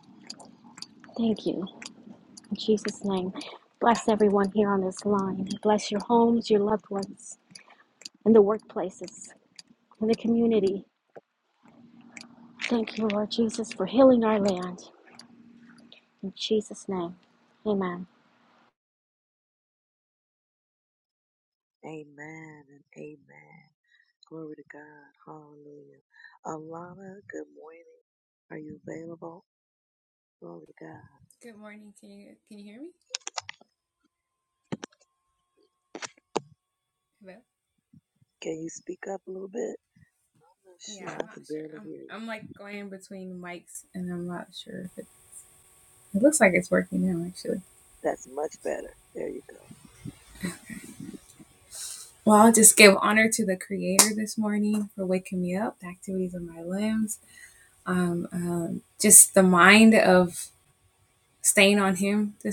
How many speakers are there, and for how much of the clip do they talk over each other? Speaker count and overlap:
3, about 2%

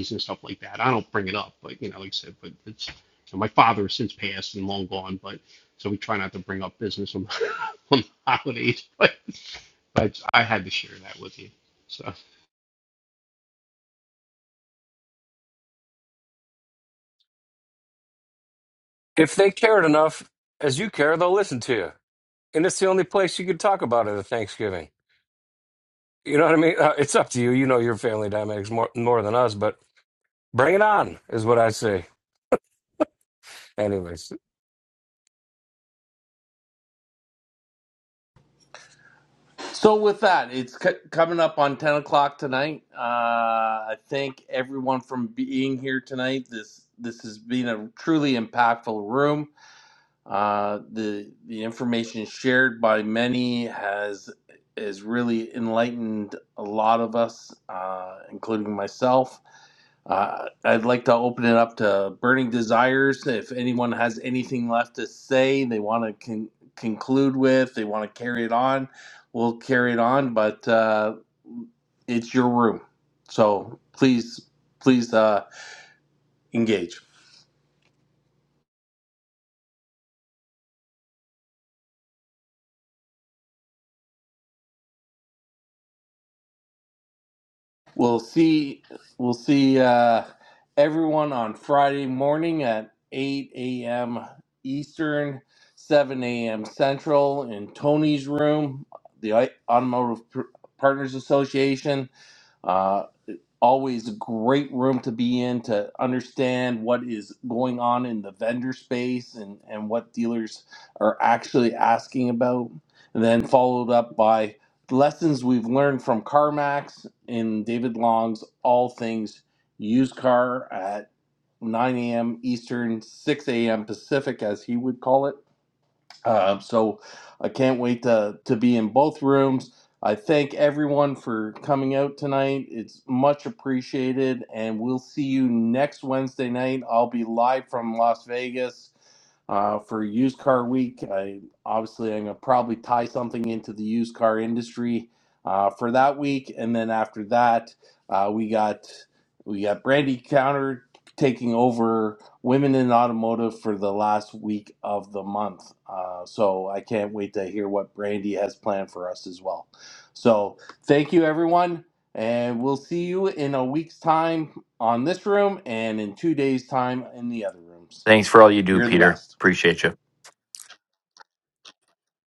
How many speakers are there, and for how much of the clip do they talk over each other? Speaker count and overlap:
4, under 1%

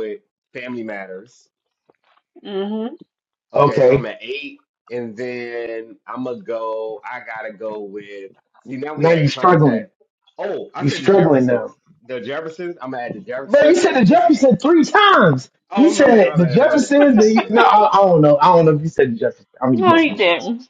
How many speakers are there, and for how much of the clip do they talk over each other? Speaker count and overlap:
3, about 26%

